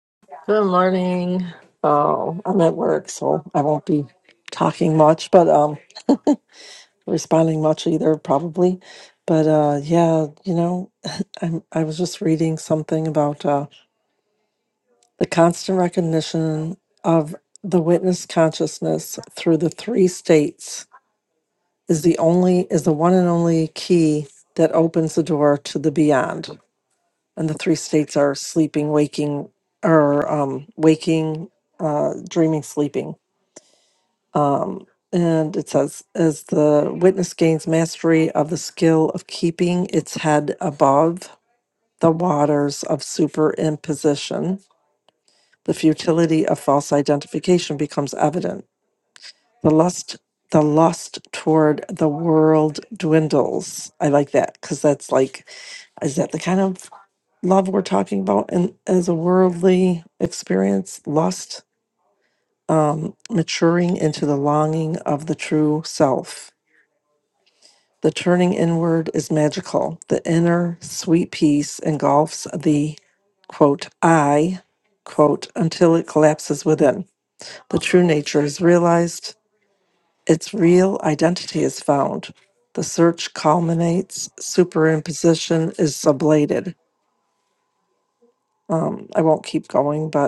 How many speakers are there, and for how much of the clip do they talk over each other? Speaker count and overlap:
one, no overlap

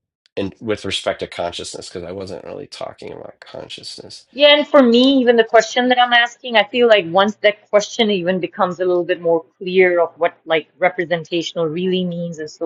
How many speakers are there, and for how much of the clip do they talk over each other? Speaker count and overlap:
two, no overlap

